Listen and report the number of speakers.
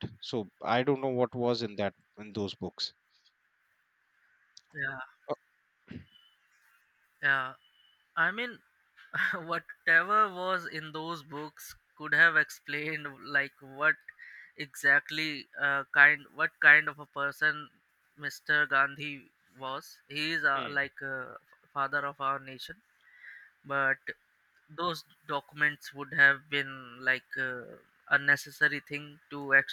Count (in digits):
2